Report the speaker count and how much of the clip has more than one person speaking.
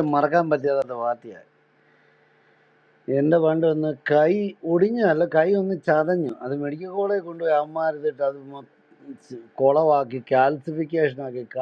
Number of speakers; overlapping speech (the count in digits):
1, no overlap